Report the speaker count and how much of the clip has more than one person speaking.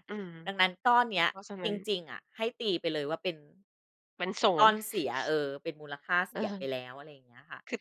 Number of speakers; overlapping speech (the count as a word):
two, about 9%